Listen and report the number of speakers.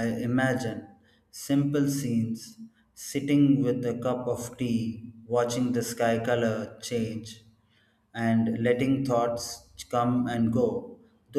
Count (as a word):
one